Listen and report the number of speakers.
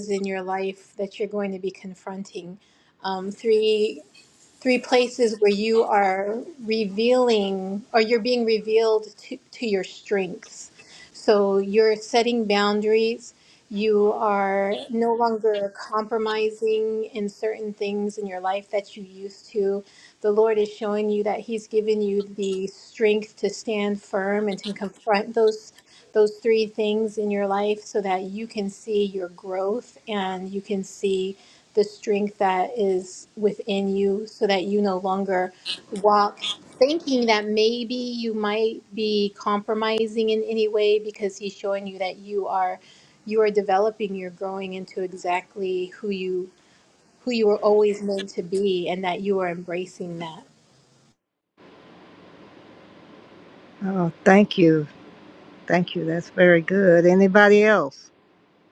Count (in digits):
2